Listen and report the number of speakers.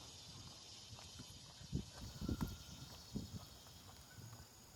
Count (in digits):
0